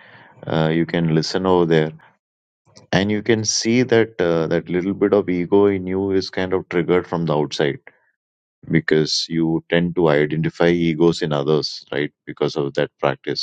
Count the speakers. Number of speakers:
1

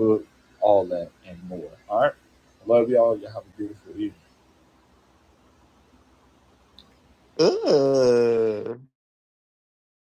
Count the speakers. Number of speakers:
2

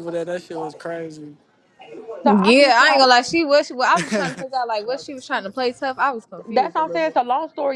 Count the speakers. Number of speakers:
3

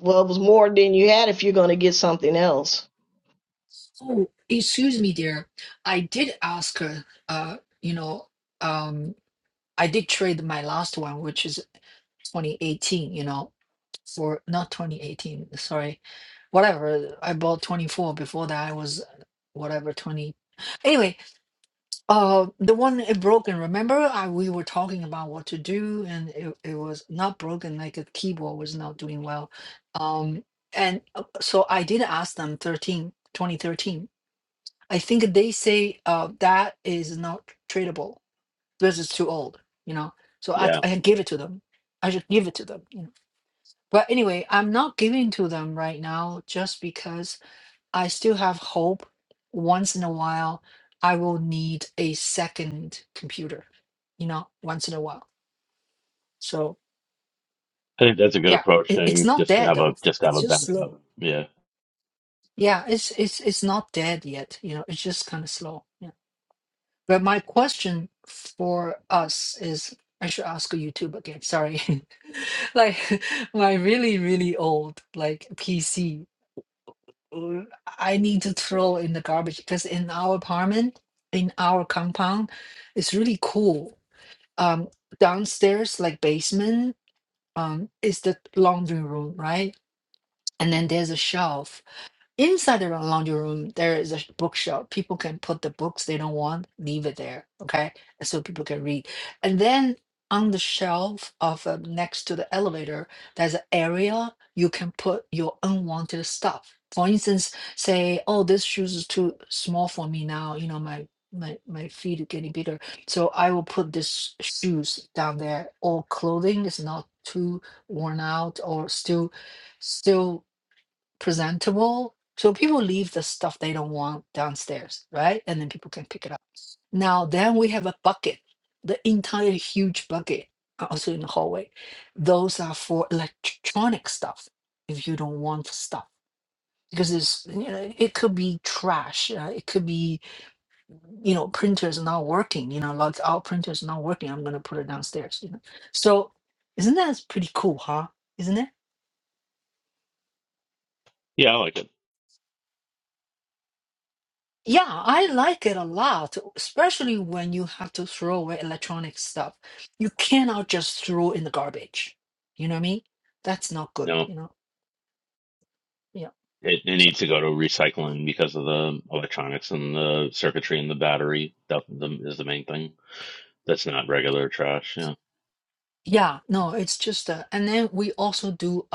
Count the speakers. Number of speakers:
3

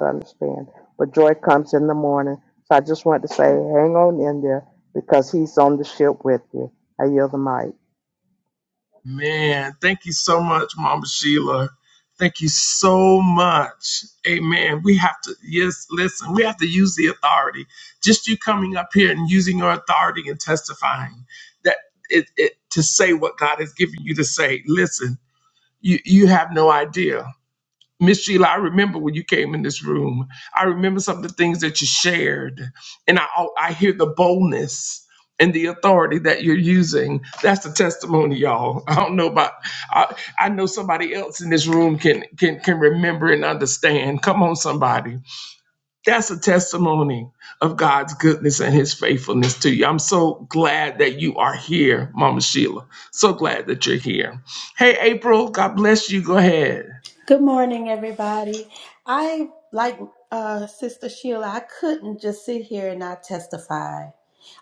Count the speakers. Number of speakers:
3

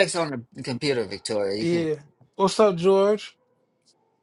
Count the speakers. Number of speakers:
2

